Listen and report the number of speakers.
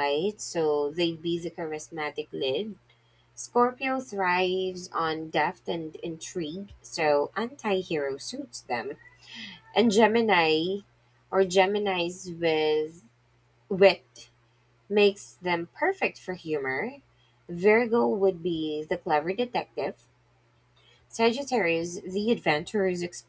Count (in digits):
1